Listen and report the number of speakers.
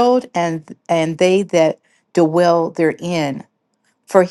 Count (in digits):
1